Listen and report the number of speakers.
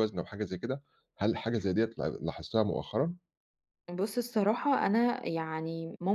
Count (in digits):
2